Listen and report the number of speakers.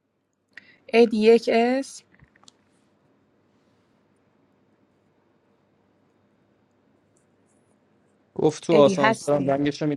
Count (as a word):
two